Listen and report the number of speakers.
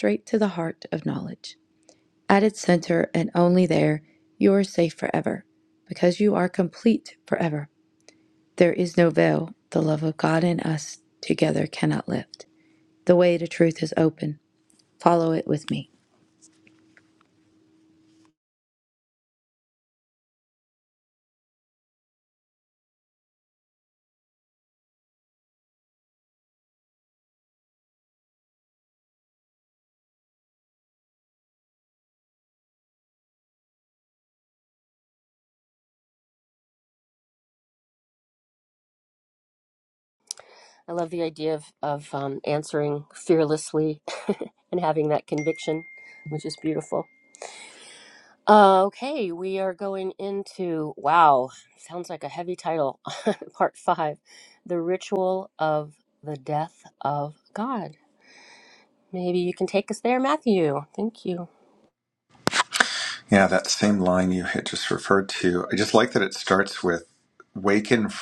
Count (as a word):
three